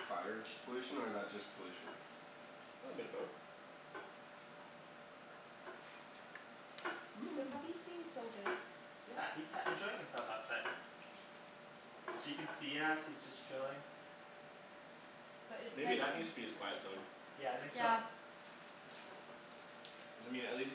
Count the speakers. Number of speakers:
four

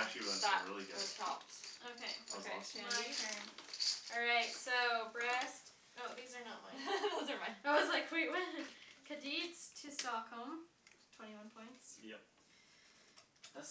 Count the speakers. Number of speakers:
three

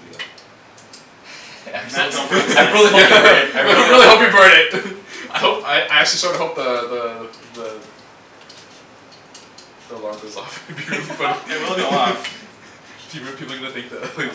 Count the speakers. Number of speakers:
three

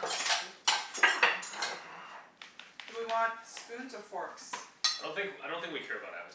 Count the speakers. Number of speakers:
three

